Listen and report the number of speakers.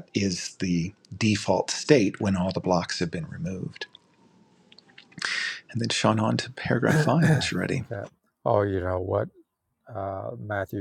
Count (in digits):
2